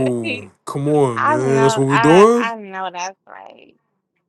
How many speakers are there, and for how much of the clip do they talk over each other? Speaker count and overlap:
2, about 31%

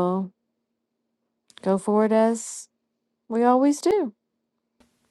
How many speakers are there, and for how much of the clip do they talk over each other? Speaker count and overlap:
1, no overlap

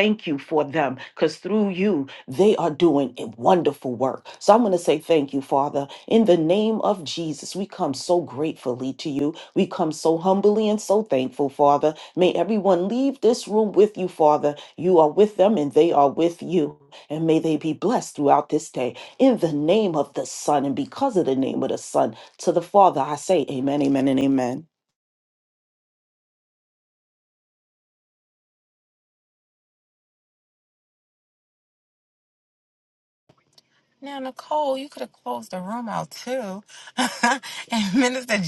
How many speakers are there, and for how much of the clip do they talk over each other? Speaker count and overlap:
2, no overlap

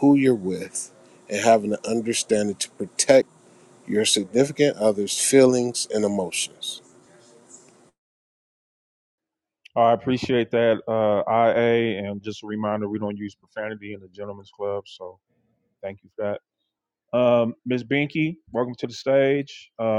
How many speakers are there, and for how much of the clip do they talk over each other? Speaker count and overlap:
2, no overlap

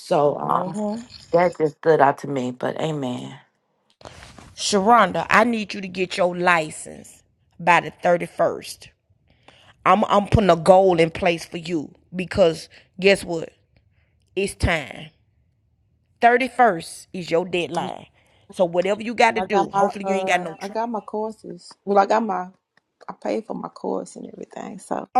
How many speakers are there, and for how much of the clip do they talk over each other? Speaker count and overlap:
3, about 5%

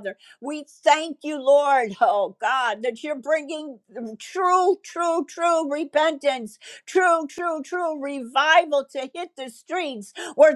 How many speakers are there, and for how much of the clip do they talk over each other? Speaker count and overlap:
1, no overlap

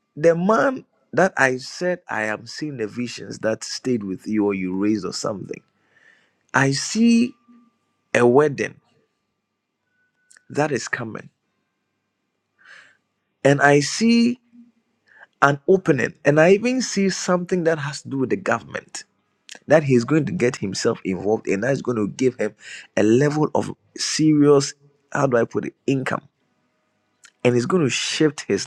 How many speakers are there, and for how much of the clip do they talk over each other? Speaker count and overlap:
1, no overlap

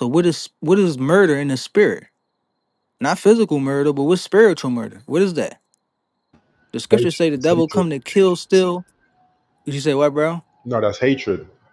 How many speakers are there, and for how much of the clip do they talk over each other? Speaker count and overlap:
2, about 8%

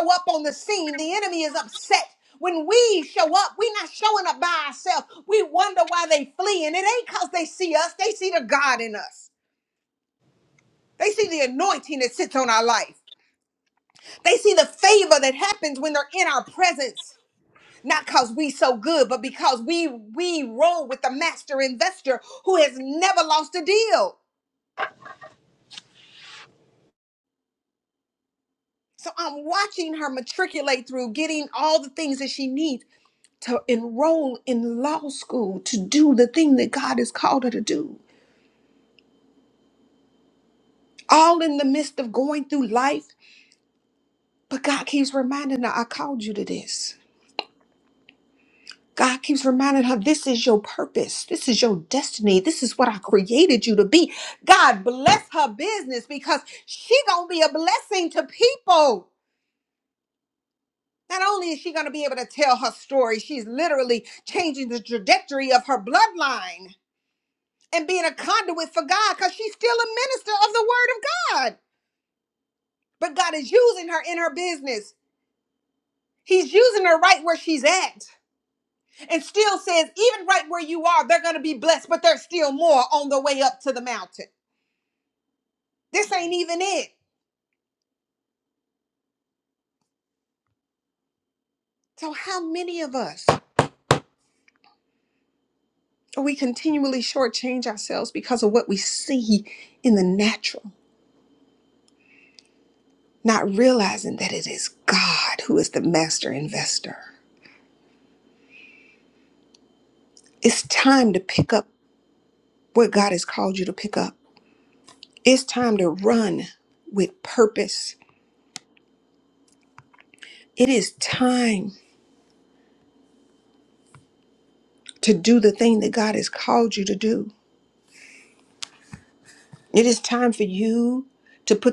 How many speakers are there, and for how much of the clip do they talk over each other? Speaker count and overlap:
1, no overlap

